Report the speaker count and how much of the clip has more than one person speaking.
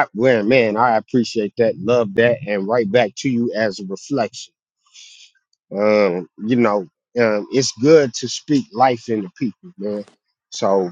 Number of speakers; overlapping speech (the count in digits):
1, no overlap